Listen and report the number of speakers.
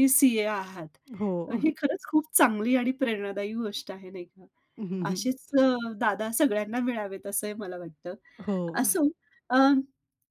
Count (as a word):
two